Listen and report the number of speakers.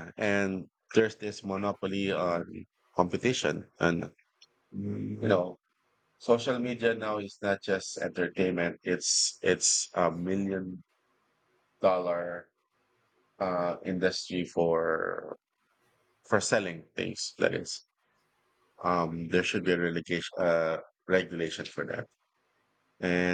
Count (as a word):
one